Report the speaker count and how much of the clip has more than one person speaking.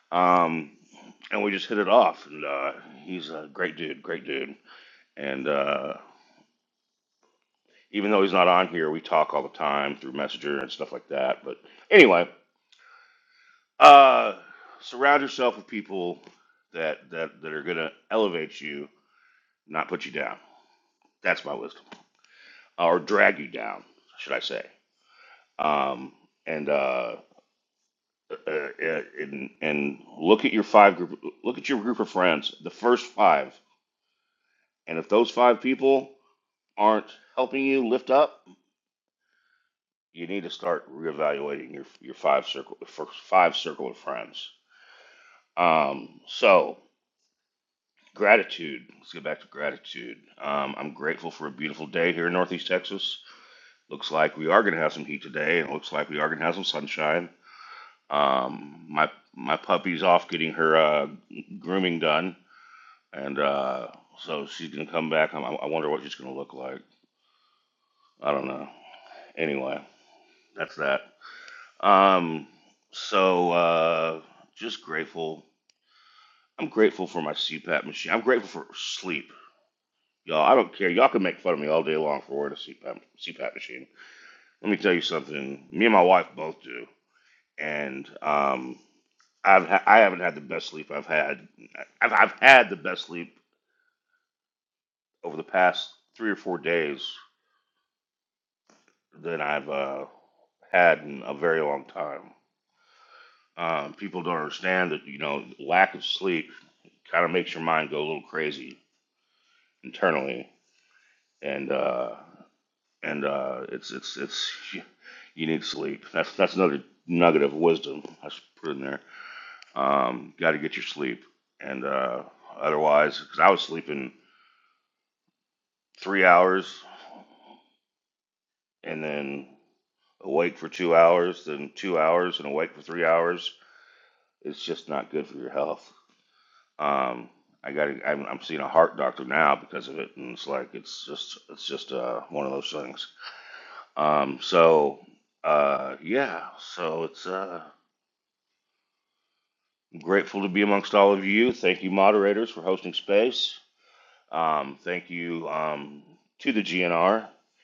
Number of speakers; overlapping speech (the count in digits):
1, no overlap